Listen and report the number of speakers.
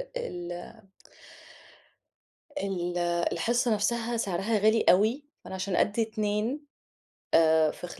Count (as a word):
one